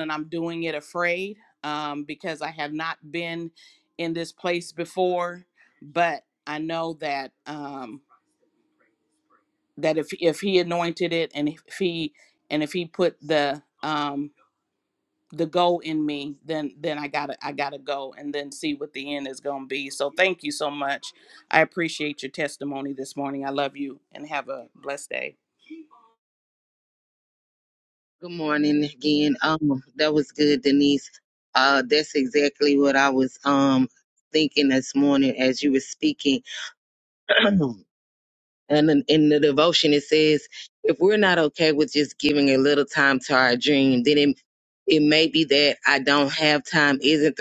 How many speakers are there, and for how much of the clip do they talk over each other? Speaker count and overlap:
2, no overlap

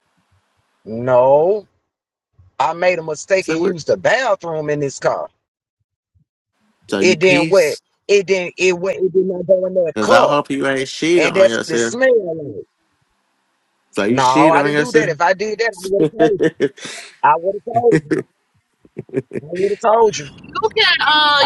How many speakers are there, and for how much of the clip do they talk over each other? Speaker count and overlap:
3, about 15%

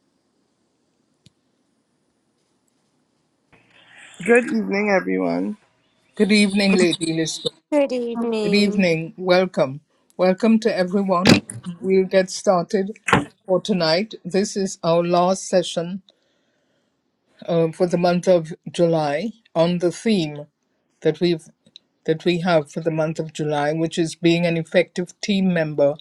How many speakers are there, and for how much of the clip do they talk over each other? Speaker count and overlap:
3, about 2%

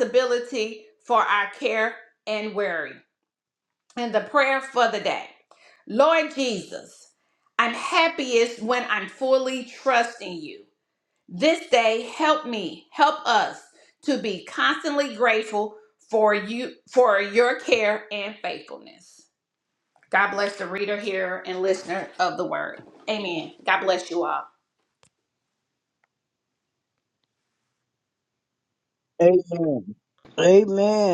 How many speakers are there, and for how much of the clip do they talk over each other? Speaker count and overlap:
2, no overlap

